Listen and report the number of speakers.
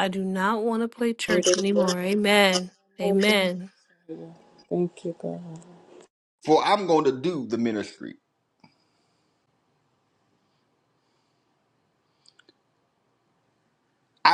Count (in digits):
3